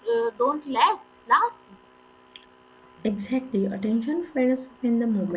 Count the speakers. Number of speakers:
2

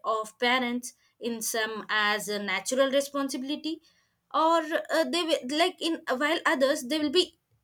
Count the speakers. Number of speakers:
1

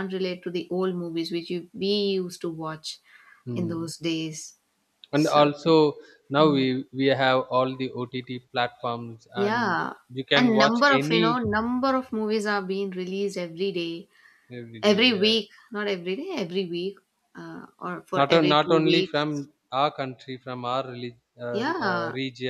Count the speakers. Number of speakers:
2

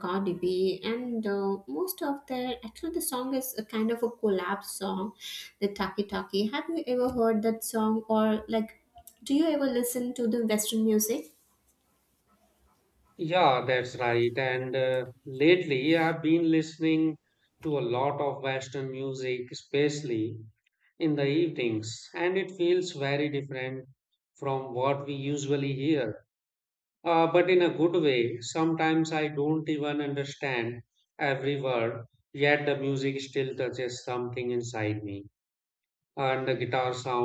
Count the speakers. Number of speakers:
2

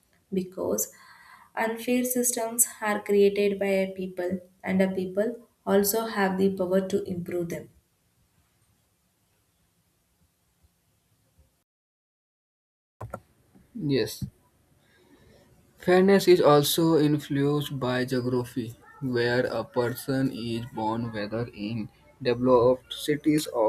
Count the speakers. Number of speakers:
2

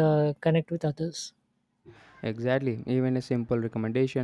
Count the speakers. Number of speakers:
2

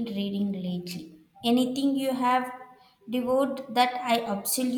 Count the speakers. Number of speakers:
1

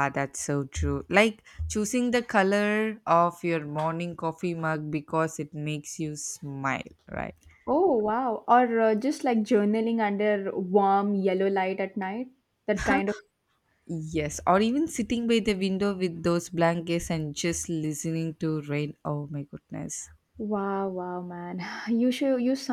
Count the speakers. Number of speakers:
2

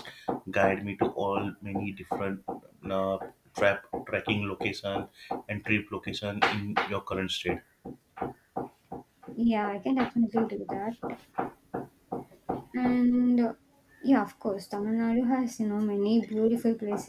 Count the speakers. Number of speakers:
2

